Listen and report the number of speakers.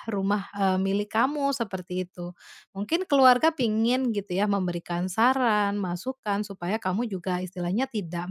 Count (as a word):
one